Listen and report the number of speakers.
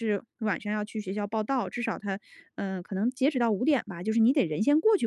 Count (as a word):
one